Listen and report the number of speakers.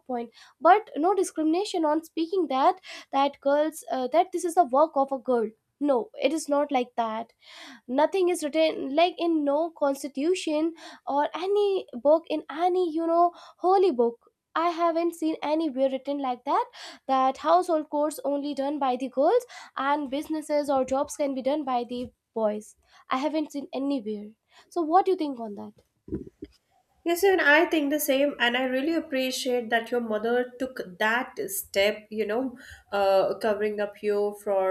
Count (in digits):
2